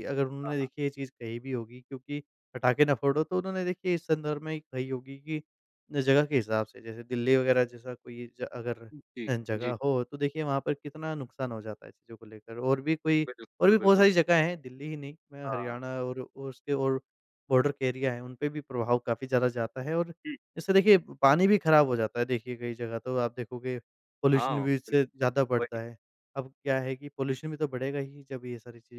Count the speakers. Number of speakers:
two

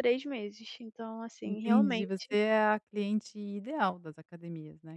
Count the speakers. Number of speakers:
two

